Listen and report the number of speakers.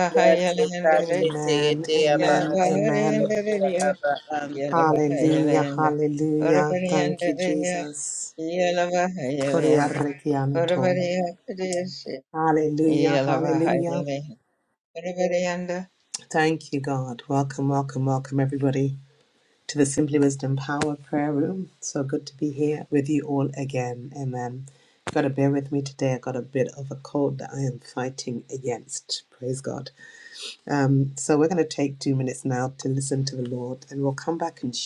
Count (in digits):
3